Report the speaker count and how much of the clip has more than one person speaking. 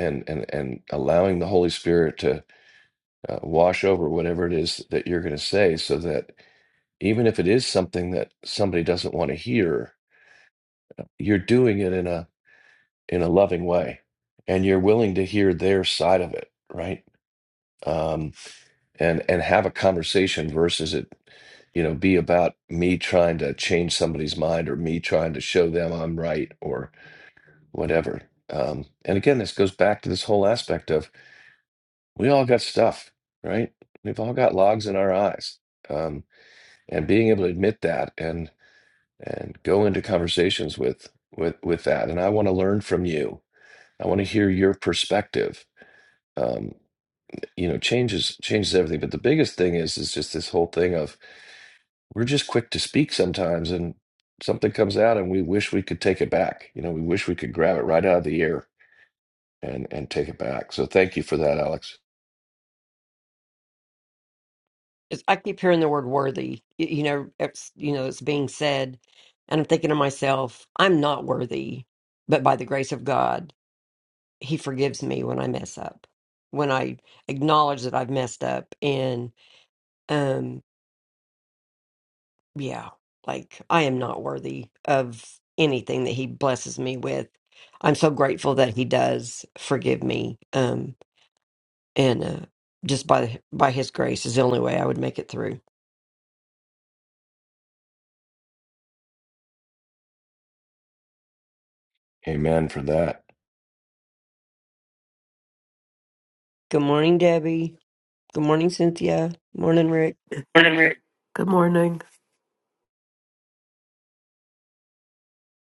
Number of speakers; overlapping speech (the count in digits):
3, no overlap